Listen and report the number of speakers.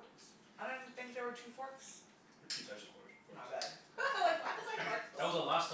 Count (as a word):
three